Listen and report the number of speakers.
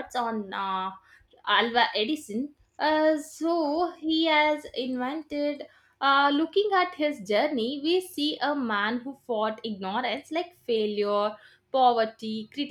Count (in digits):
1